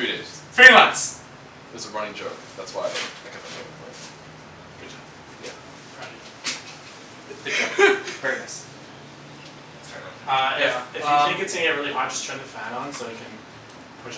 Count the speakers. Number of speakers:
three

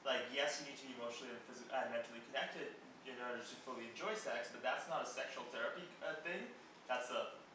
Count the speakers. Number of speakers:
one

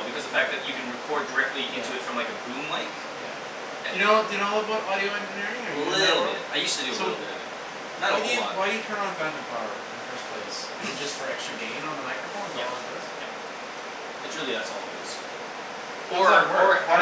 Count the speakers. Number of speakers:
two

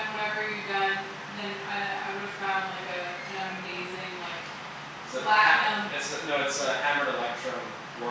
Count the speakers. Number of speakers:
two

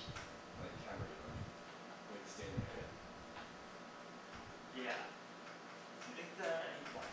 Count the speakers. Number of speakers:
two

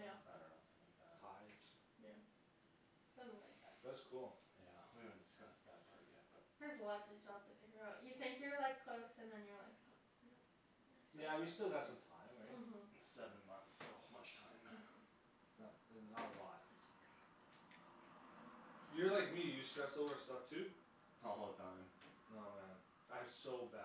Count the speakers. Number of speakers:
three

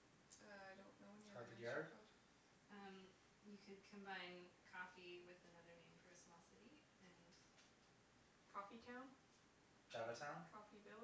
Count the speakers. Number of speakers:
three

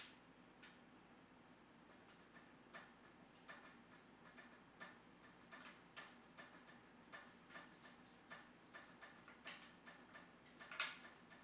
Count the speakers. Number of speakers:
zero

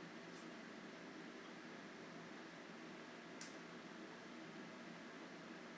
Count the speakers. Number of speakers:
zero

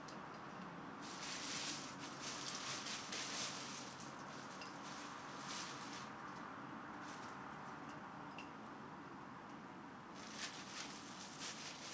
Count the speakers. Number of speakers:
zero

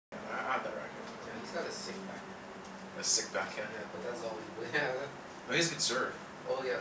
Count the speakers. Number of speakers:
two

